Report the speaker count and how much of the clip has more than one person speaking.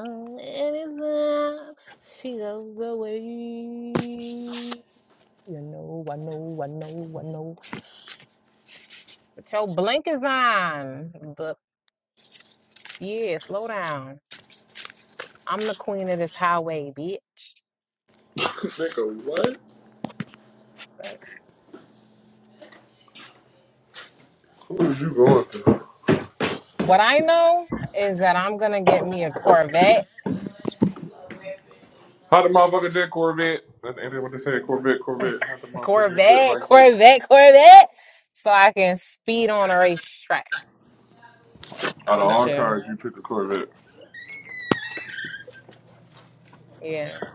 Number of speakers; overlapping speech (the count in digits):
2, about 4%